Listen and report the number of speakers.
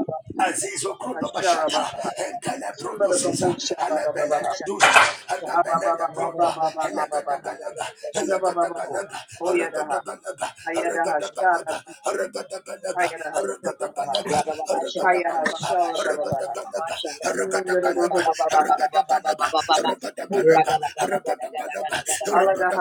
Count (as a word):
three